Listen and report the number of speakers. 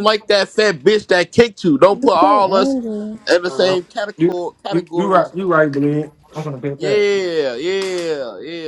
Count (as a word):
three